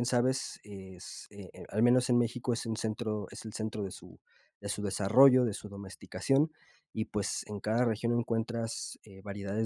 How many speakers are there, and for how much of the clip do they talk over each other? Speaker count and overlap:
one, no overlap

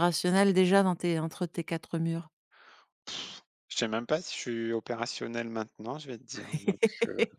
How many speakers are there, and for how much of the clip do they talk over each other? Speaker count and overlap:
two, no overlap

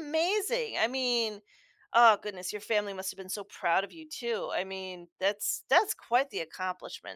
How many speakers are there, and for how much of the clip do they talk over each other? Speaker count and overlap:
one, no overlap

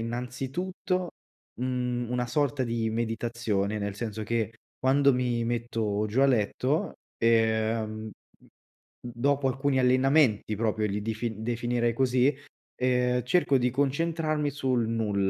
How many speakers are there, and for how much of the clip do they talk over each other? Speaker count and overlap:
one, no overlap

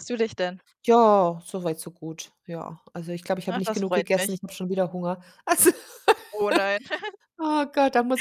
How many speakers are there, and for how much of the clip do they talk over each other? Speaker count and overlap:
two, about 10%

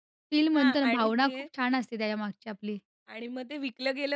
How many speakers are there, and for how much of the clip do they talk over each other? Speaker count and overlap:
two, about 23%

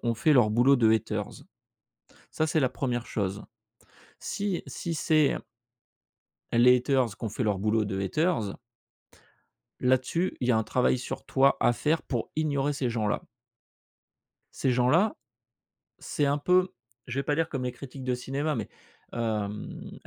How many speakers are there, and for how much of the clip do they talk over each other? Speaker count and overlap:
one, no overlap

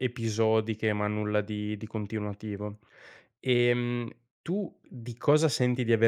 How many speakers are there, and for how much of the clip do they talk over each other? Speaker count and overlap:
one, no overlap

